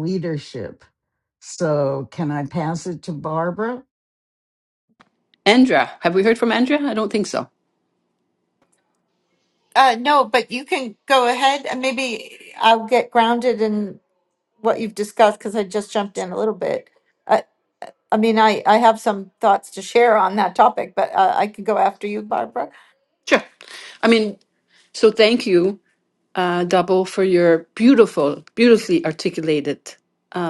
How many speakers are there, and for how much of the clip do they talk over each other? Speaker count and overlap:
three, no overlap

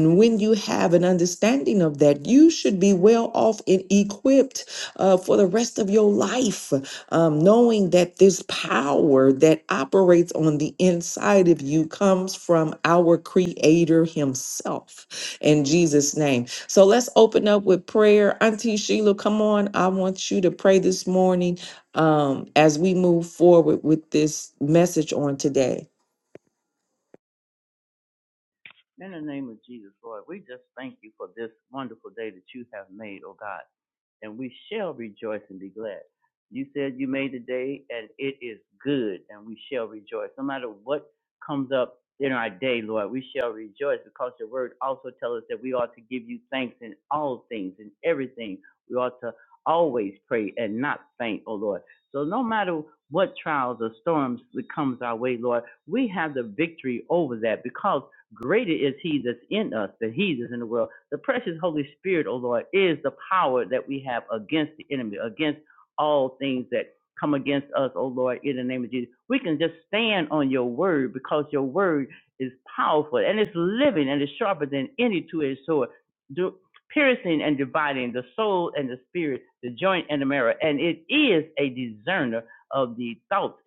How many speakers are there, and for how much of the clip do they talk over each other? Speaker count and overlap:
two, no overlap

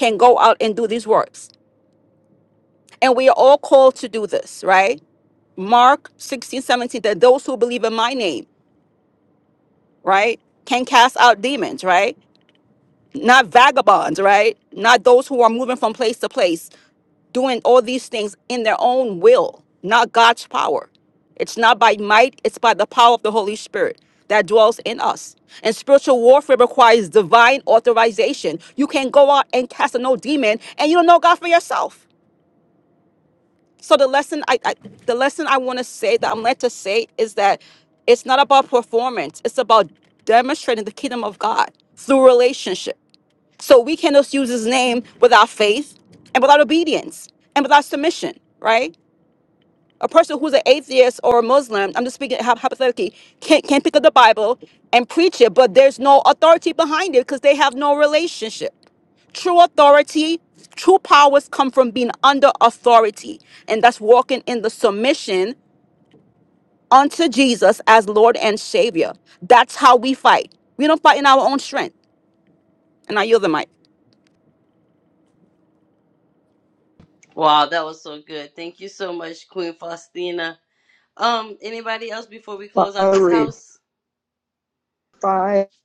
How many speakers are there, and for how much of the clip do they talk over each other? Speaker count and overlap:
three, about 1%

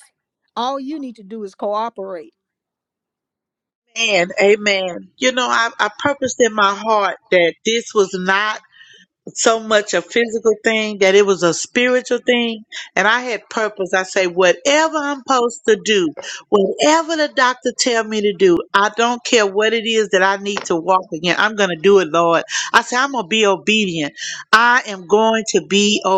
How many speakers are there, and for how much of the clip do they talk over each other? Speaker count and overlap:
two, no overlap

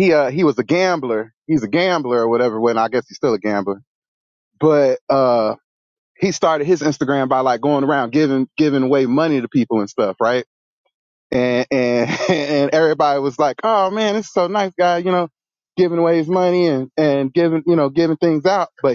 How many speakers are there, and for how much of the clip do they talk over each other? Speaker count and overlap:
one, no overlap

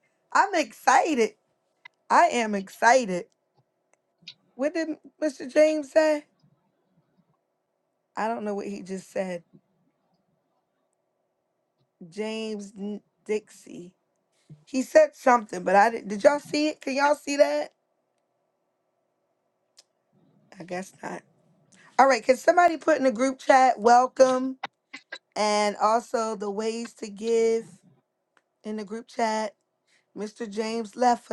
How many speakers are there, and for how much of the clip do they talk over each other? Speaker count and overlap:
one, no overlap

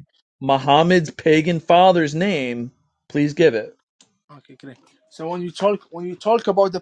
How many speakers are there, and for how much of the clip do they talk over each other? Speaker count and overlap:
two, no overlap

